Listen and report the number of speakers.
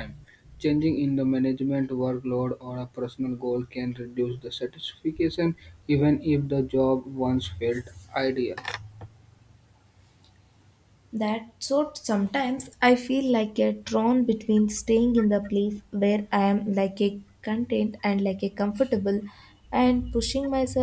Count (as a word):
two